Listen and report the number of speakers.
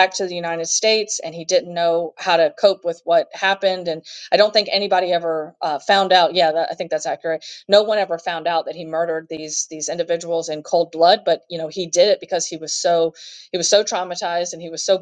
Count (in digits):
1